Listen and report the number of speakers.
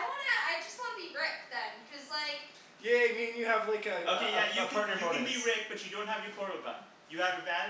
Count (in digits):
3